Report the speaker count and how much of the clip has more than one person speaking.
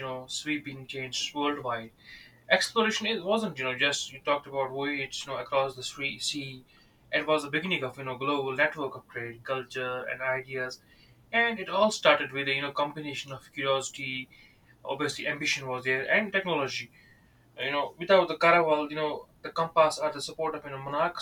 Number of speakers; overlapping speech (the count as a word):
one, no overlap